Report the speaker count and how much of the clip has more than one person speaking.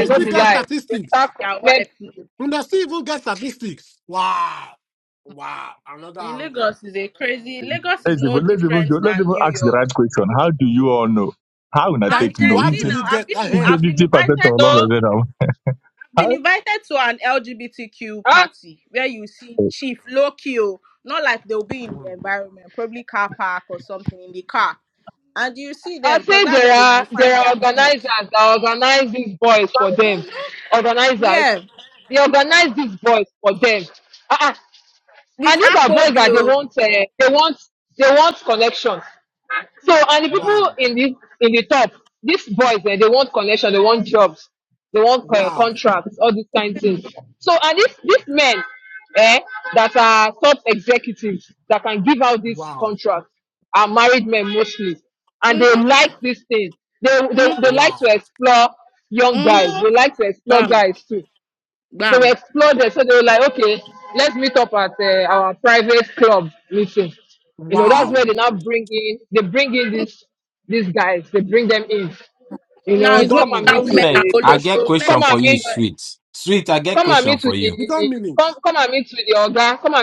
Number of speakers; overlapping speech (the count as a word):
five, about 23%